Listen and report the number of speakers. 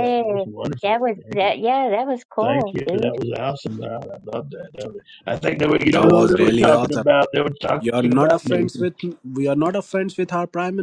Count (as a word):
three